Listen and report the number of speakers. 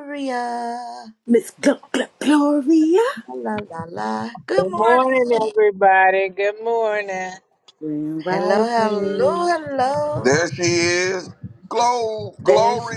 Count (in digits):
4